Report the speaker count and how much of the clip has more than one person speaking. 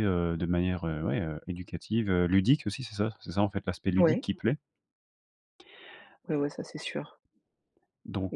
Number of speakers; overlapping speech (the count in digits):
2, about 4%